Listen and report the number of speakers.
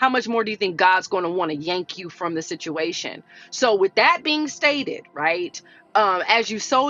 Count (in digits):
1